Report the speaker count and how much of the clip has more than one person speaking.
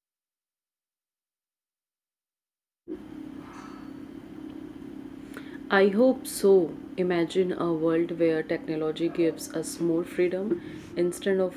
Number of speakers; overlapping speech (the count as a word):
one, no overlap